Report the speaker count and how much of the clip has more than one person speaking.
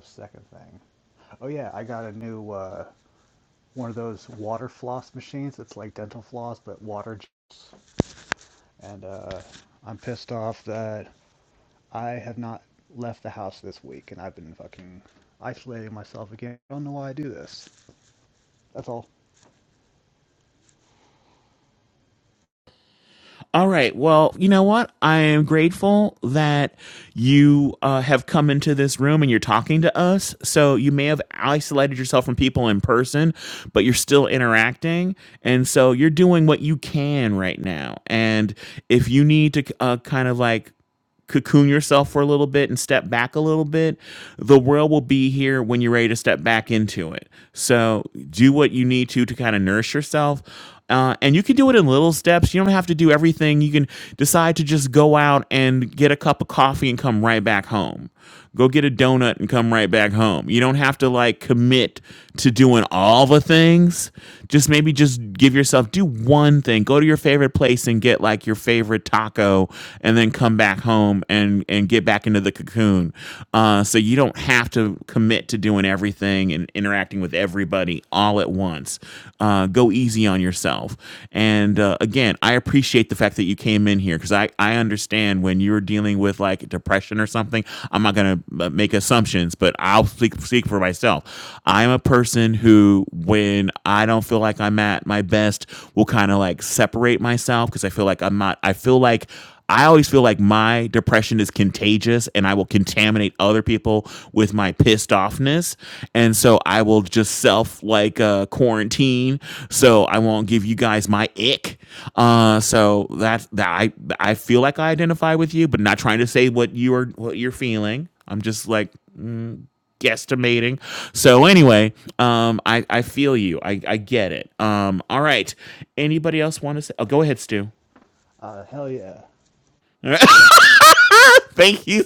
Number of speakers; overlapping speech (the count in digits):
2, no overlap